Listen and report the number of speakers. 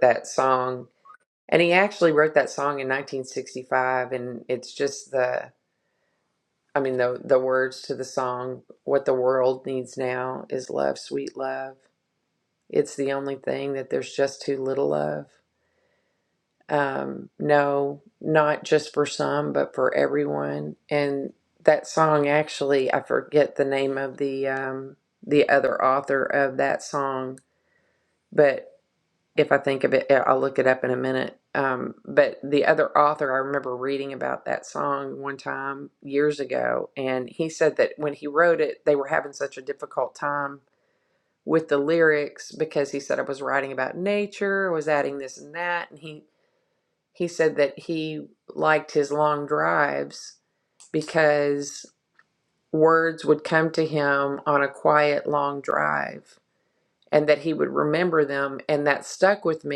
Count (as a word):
one